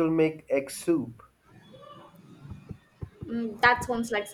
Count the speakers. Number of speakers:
two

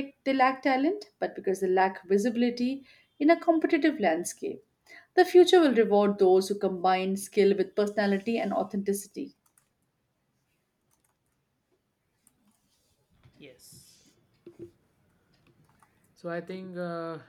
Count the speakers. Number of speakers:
two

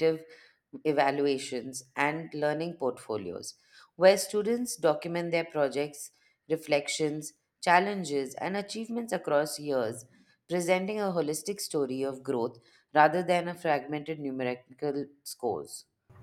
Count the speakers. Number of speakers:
one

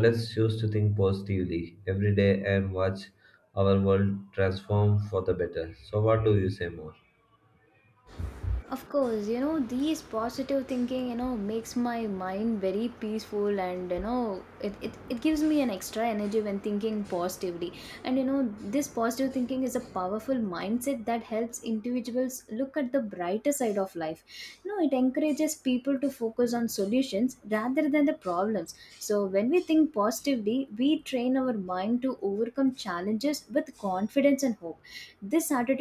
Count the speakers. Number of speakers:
two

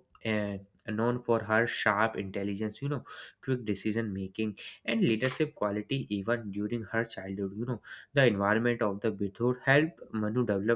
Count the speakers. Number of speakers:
one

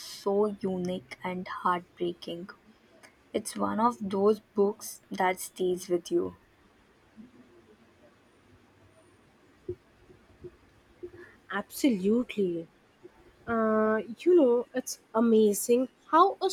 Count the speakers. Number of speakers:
two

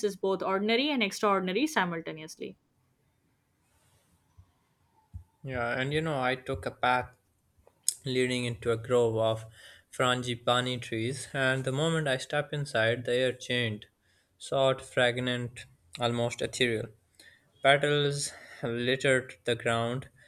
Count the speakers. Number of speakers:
two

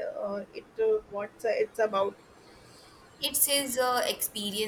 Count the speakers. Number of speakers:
two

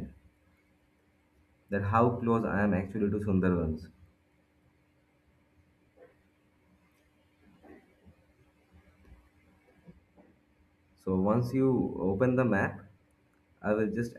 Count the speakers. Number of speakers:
one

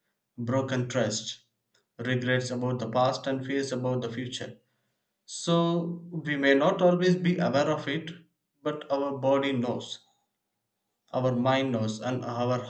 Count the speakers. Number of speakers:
one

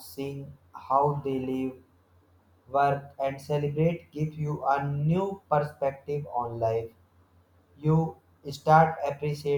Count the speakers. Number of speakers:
one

